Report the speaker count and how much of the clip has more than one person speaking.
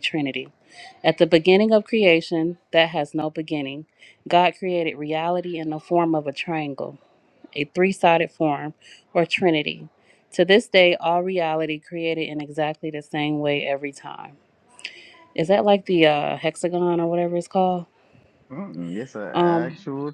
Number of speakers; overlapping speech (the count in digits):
2, about 2%